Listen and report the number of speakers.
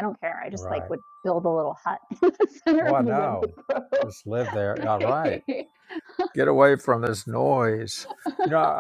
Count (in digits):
2